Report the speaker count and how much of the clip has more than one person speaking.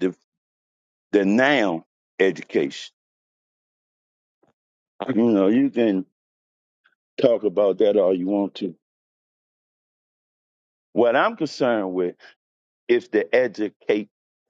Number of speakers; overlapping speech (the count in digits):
1, no overlap